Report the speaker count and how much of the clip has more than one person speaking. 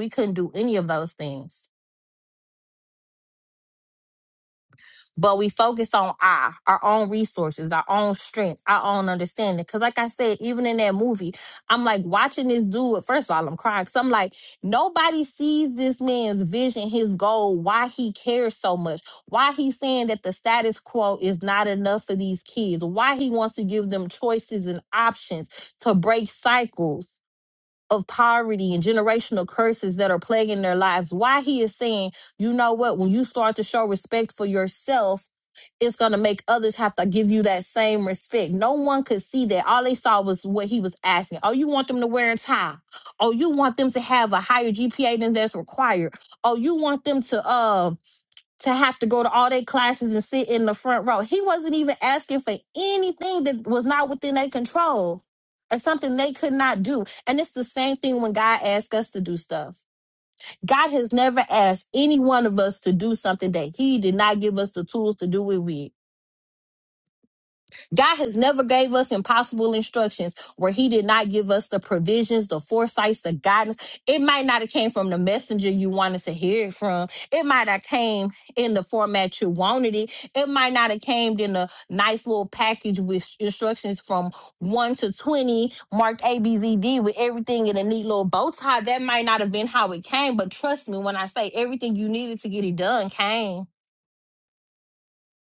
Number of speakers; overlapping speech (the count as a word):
one, no overlap